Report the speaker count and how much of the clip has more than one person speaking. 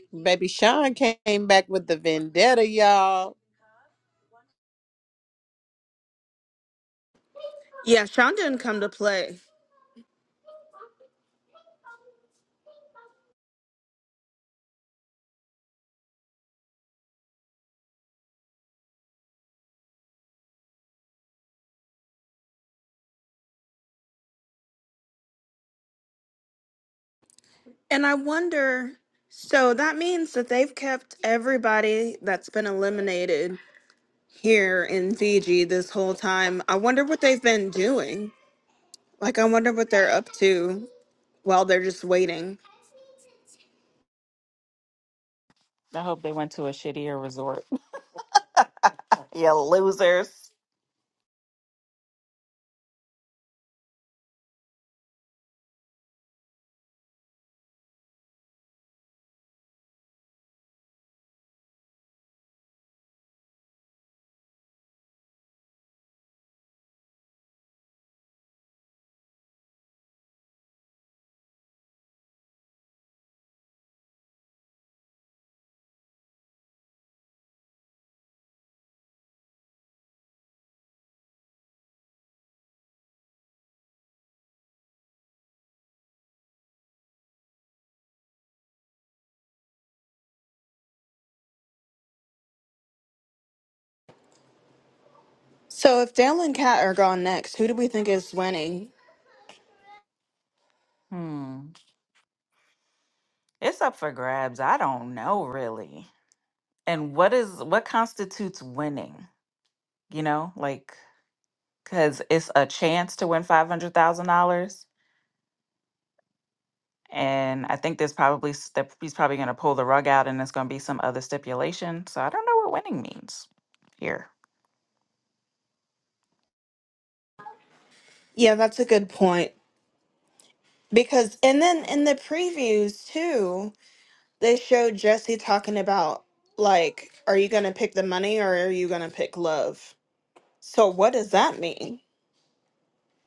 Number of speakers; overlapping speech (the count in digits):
3, no overlap